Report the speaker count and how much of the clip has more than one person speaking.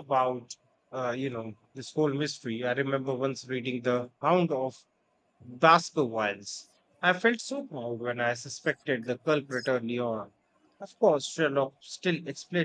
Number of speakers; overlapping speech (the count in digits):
1, no overlap